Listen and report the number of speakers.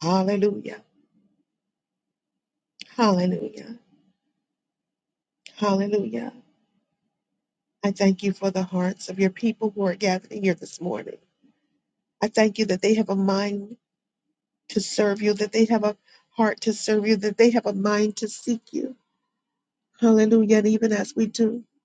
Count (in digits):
1